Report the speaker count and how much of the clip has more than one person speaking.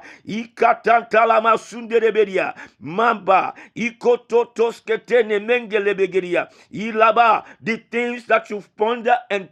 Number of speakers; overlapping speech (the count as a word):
one, no overlap